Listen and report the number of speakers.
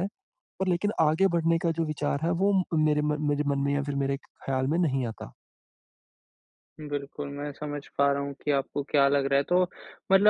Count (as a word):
two